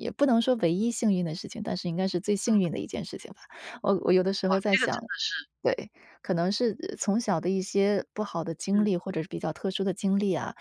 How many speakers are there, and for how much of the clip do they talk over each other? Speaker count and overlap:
2, about 8%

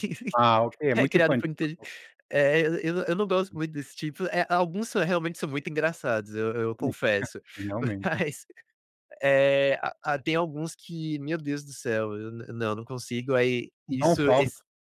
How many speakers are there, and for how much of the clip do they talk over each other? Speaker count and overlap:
2, about 4%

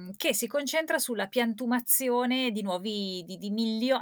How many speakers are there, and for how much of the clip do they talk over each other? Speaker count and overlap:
1, no overlap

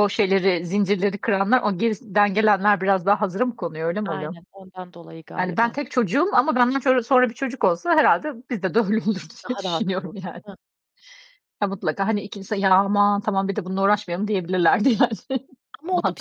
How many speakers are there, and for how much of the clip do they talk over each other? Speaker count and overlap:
2, about 10%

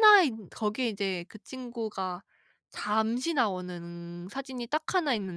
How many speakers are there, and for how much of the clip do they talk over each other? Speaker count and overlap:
1, no overlap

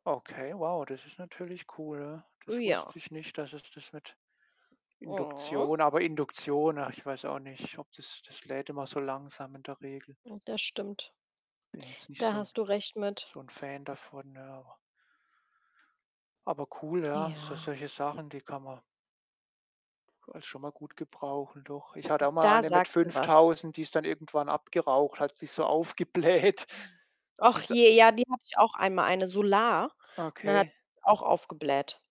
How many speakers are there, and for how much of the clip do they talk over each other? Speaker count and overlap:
2, about 10%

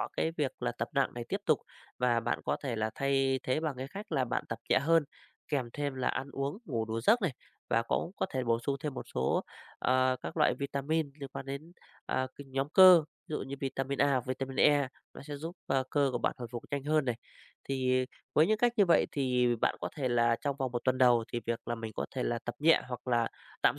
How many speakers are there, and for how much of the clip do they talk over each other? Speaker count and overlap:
1, no overlap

